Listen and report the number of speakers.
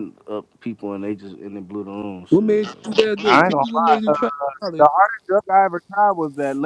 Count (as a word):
three